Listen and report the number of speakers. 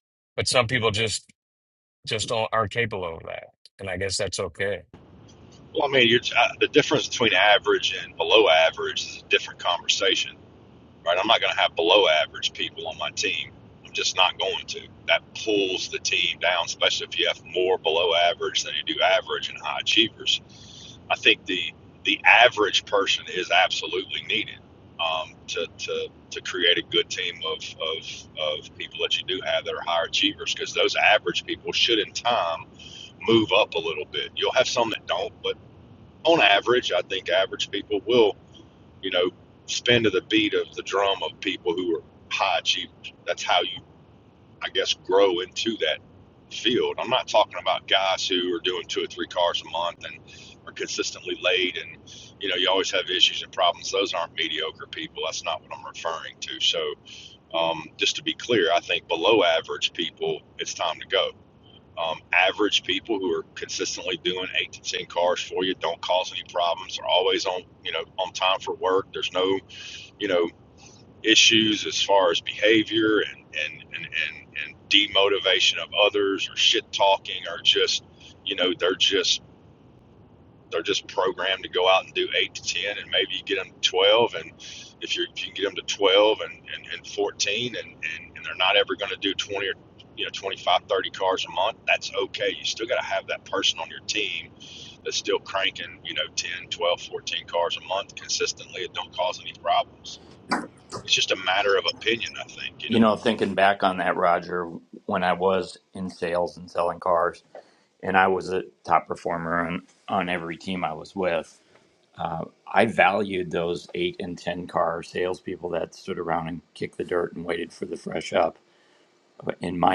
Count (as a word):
three